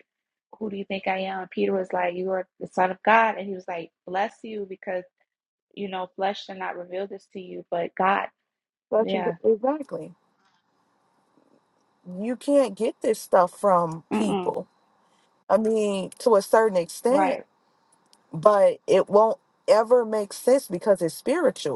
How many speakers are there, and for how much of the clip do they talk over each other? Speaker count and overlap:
2, about 5%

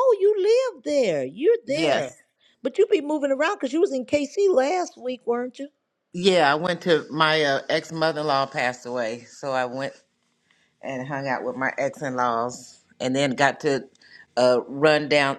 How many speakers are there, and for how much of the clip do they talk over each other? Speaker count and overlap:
2, about 3%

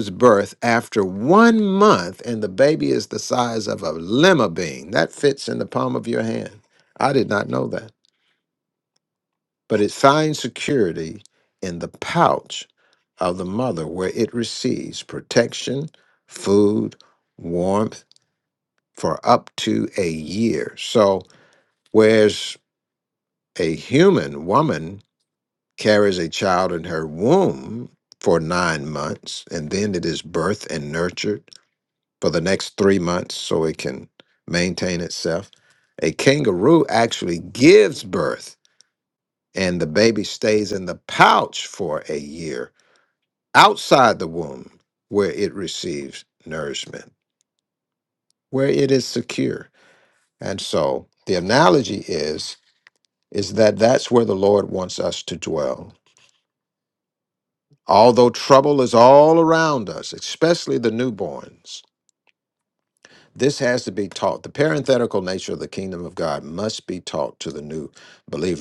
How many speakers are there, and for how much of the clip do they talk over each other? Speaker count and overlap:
1, no overlap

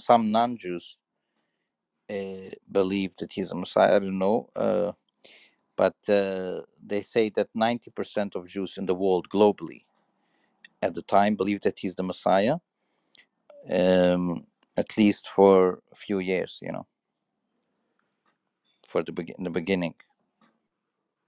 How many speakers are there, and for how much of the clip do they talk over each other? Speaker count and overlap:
1, no overlap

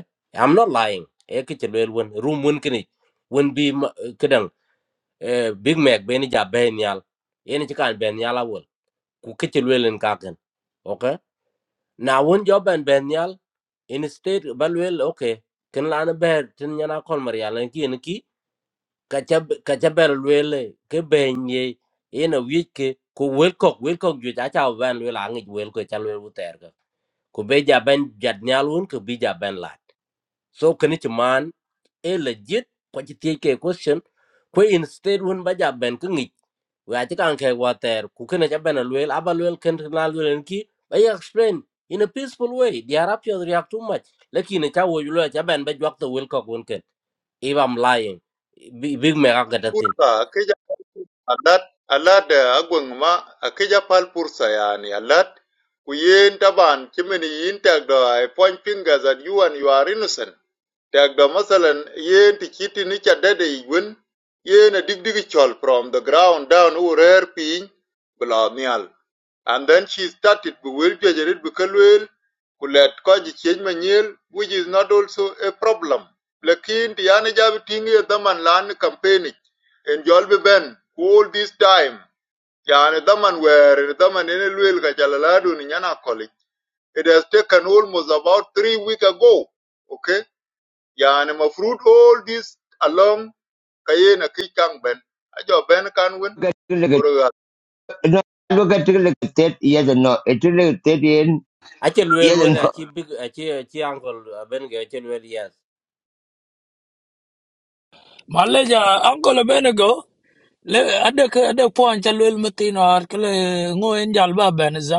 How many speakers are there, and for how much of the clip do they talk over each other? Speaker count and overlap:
4, about 1%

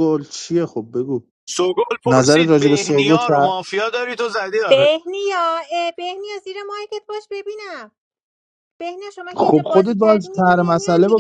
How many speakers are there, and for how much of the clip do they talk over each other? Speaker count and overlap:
3, about 32%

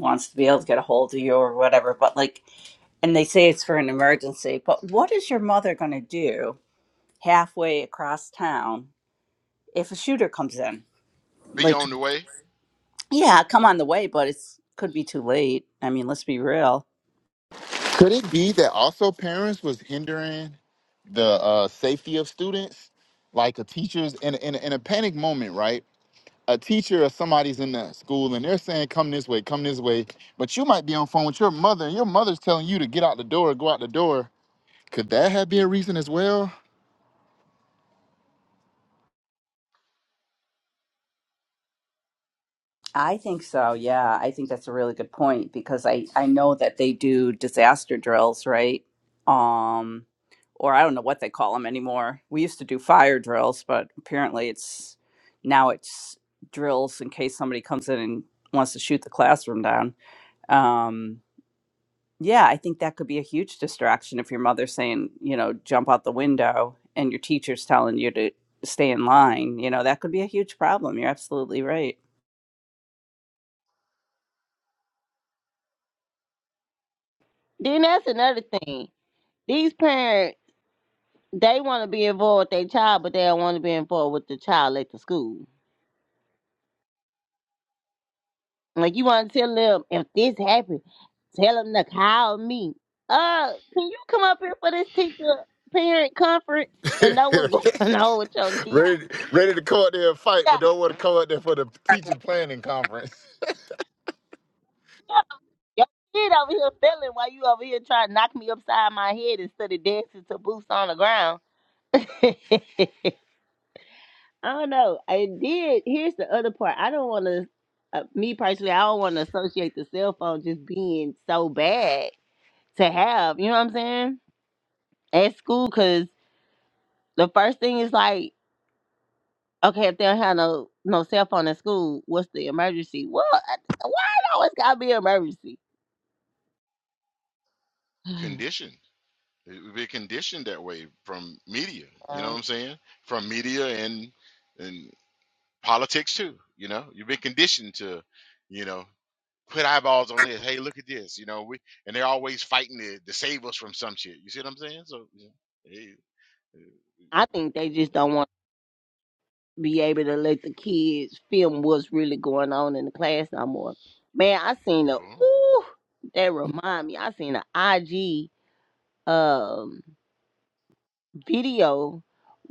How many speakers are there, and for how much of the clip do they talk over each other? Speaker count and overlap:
4, about 1%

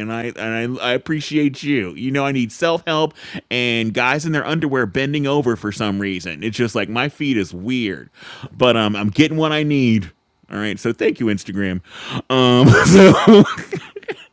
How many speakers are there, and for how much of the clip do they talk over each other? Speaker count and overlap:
1, no overlap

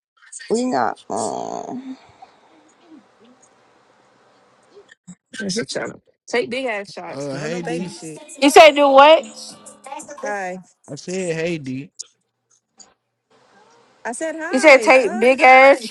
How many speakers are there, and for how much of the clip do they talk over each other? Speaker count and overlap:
4, about 10%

